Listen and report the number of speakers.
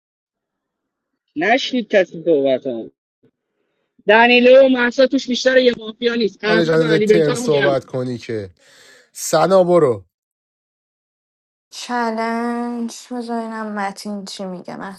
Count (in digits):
3